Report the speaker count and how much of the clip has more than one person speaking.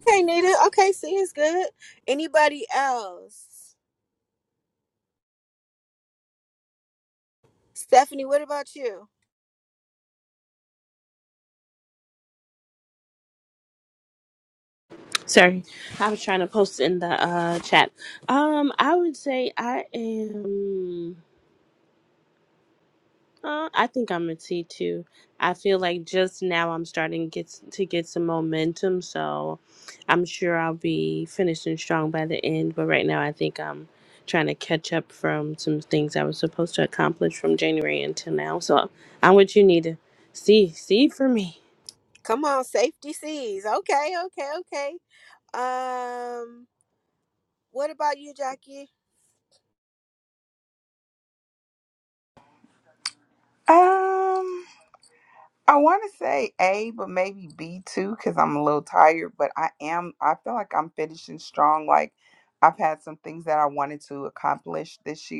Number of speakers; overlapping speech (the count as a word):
three, no overlap